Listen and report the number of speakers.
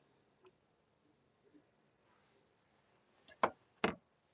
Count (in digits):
0